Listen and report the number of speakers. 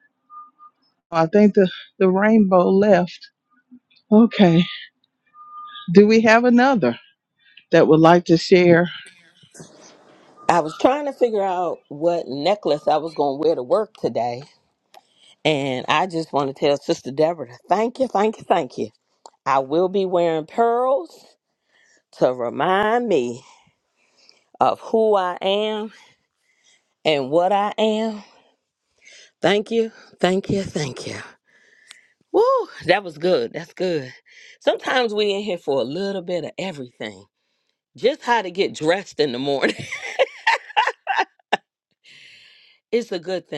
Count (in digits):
2